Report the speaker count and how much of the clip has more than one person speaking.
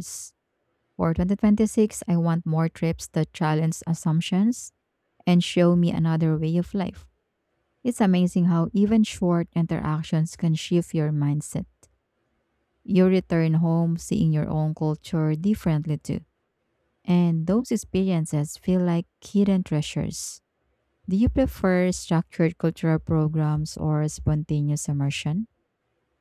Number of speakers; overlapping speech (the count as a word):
one, no overlap